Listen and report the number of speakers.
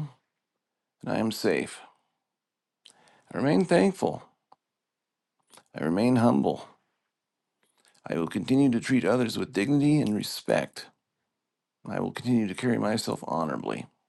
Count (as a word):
one